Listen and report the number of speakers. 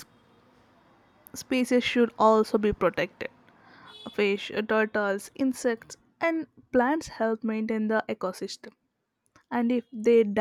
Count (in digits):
1